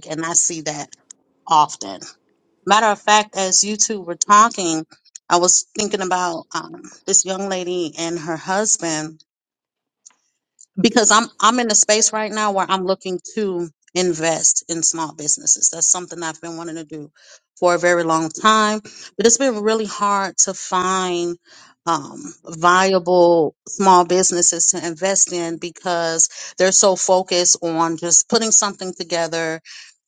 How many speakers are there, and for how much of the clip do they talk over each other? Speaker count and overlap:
one, no overlap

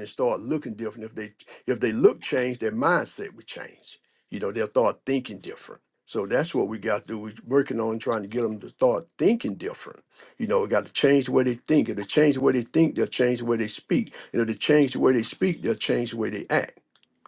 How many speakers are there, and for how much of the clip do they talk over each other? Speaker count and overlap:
one, no overlap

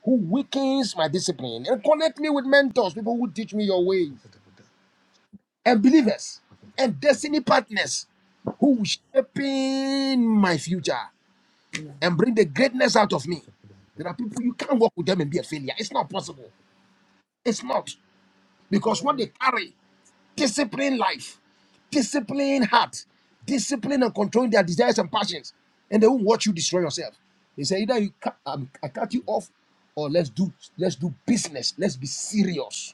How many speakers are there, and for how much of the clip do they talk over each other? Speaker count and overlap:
one, no overlap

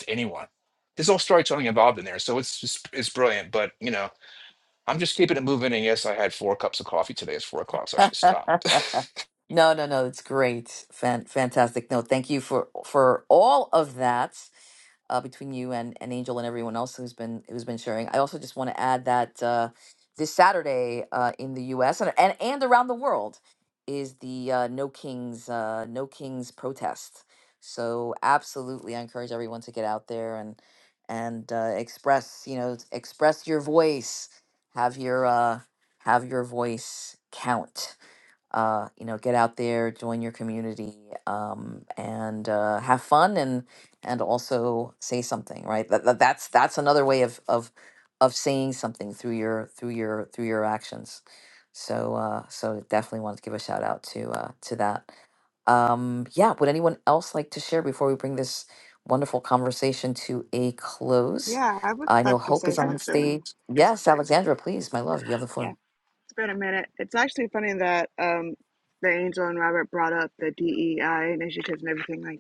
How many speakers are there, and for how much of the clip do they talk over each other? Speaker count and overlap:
three, about 2%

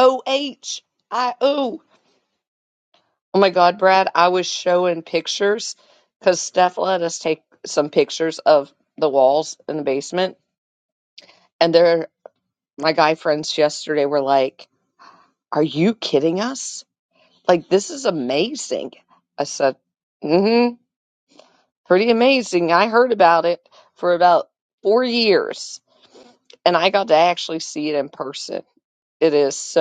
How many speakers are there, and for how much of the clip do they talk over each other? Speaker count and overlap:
one, no overlap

